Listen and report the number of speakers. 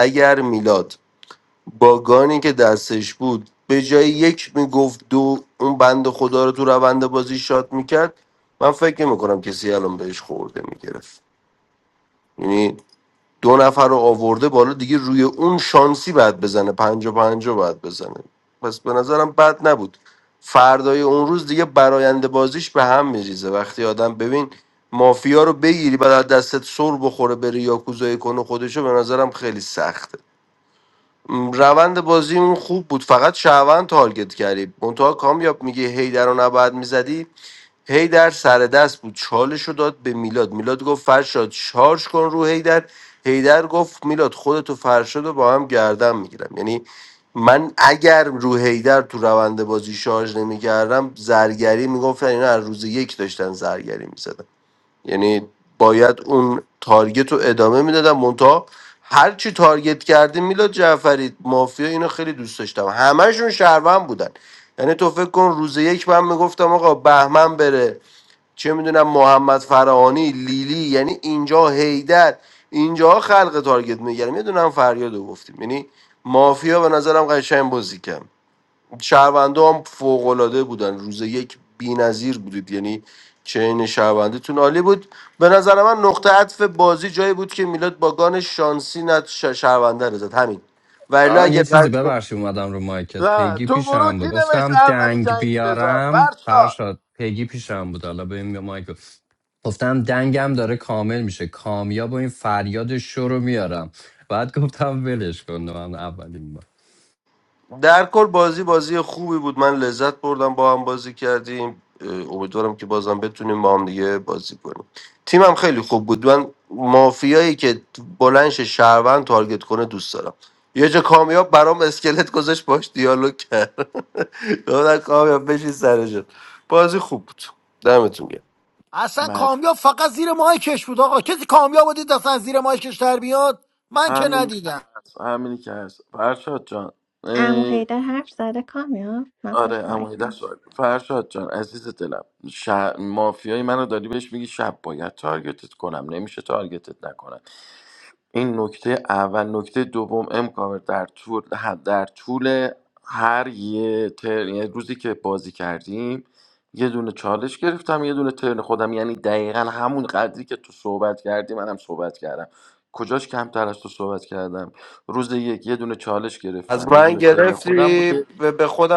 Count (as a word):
five